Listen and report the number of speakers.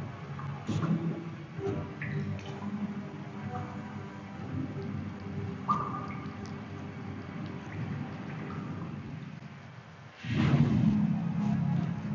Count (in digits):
0